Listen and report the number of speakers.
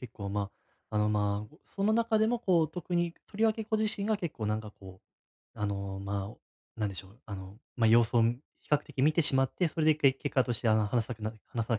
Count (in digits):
1